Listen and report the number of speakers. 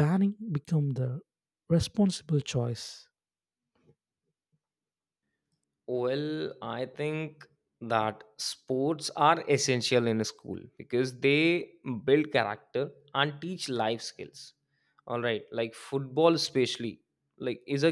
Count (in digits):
2